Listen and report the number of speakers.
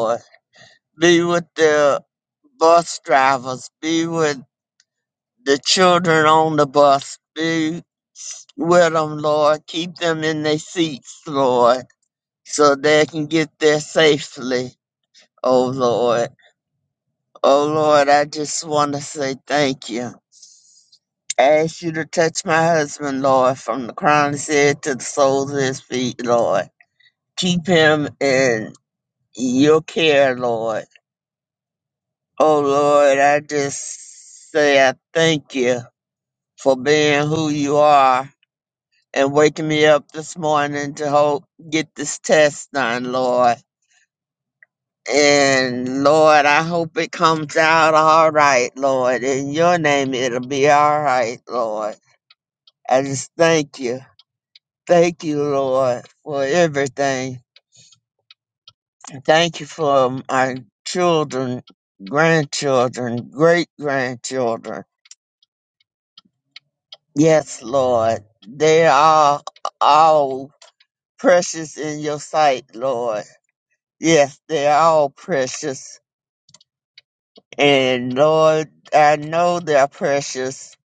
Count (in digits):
1